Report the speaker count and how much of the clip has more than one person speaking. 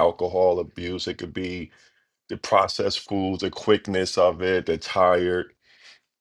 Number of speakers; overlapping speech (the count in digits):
1, no overlap